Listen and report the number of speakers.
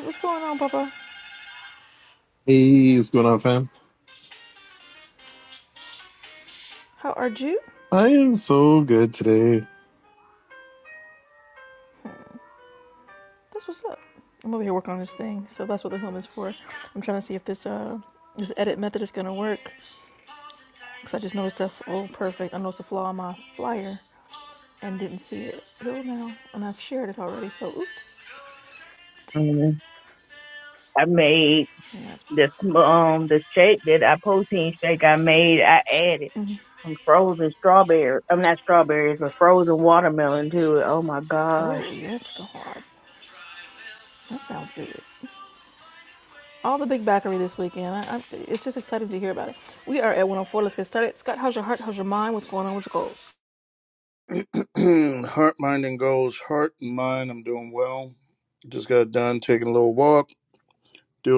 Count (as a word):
four